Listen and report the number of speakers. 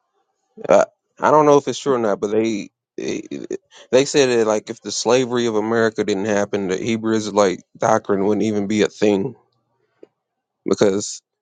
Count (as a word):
one